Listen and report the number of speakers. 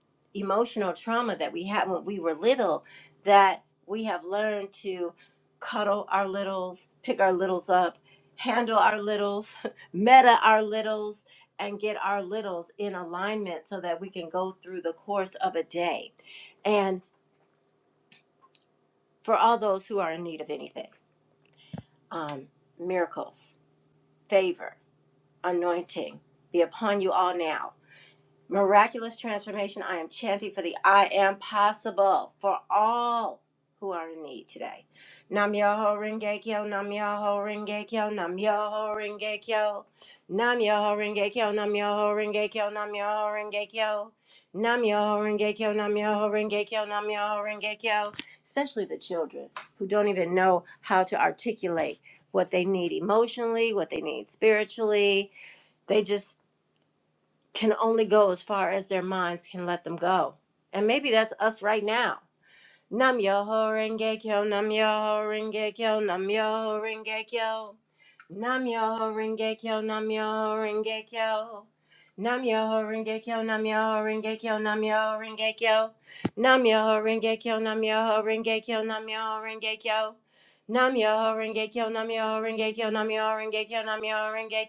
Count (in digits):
1